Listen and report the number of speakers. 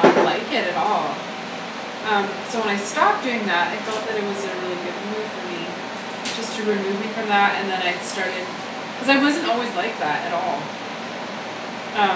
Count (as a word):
one